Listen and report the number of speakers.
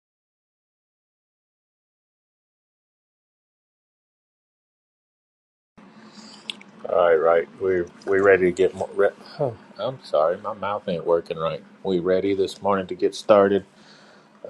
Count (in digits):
1